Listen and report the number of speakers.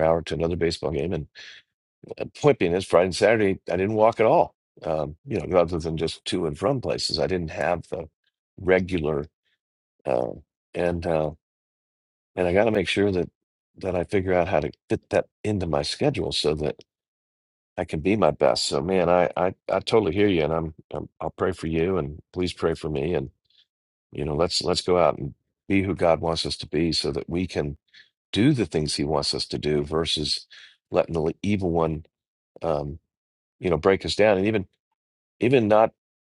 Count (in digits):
1